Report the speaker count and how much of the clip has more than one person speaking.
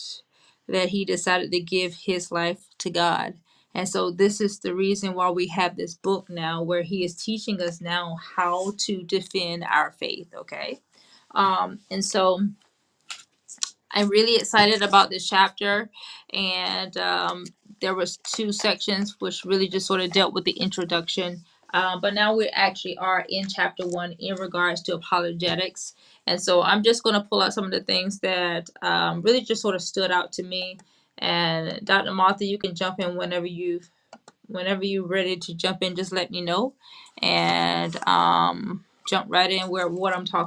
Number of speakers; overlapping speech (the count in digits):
1, no overlap